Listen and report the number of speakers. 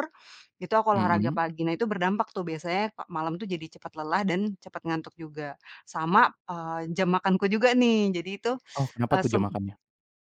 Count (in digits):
2